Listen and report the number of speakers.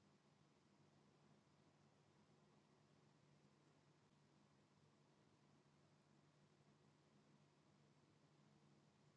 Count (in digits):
0